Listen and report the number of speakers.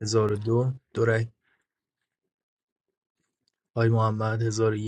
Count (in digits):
1